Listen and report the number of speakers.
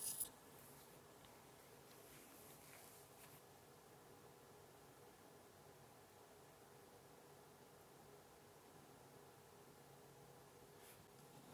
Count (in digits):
0